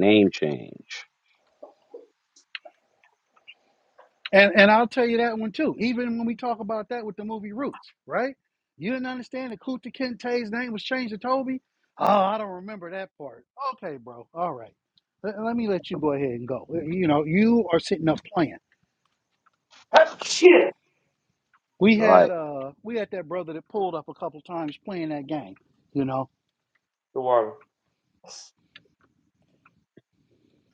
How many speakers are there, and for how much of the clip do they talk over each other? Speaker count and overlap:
three, about 1%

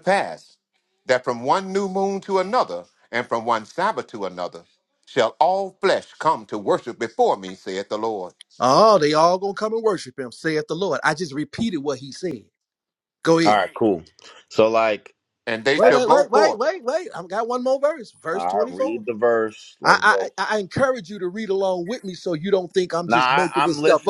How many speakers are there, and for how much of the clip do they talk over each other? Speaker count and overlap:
three, about 13%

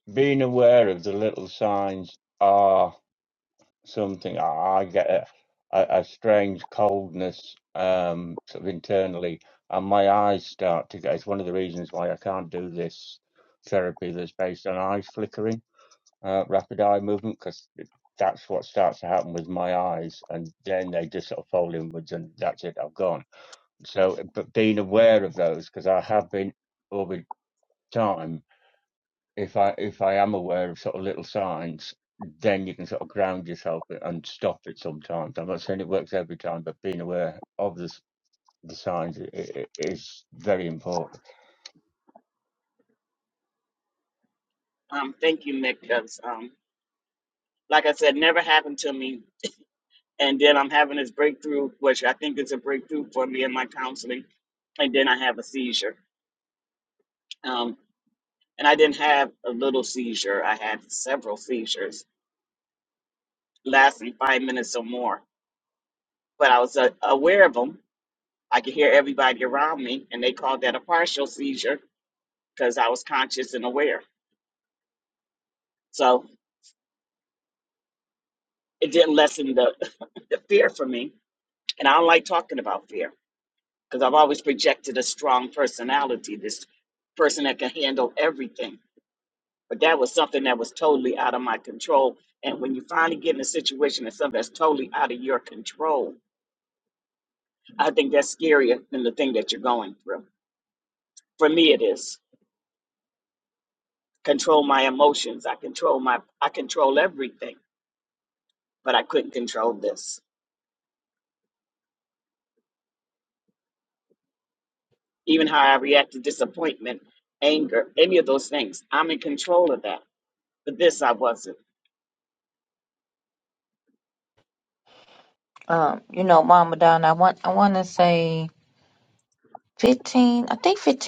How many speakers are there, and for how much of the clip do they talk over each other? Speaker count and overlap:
three, no overlap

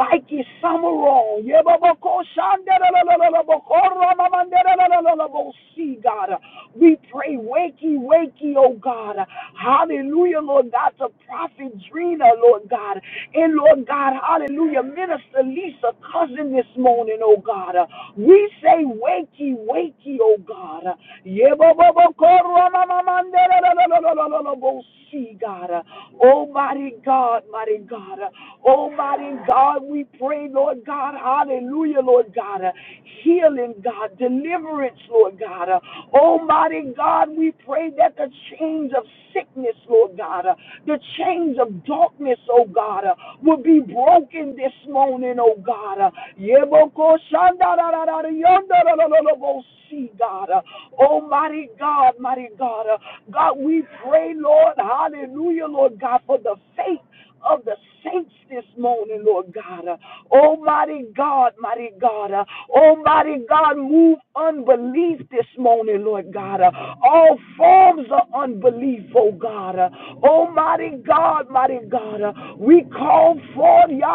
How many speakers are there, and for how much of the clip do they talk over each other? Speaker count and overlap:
one, no overlap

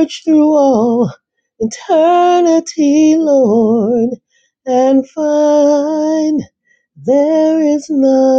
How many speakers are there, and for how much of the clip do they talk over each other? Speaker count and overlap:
one, no overlap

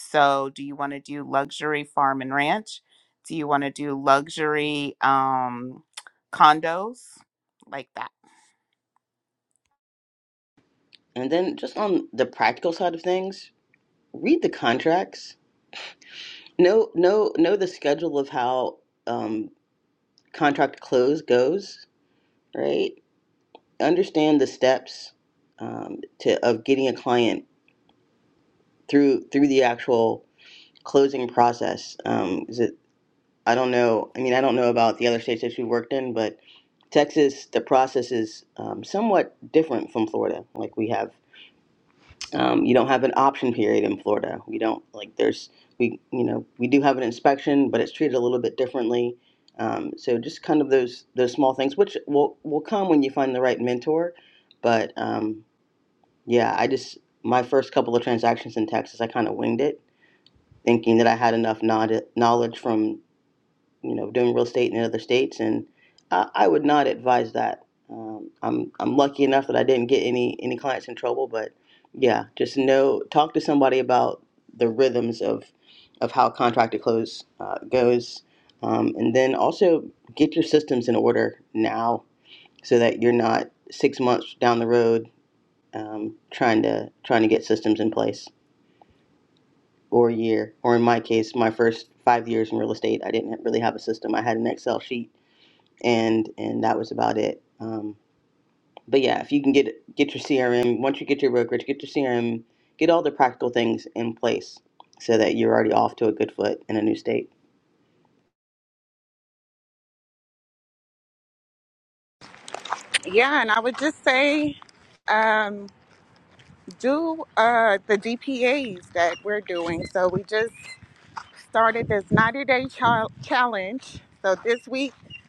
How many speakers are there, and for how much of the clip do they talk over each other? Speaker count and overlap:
three, no overlap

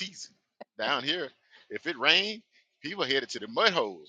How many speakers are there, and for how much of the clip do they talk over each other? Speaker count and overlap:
one, no overlap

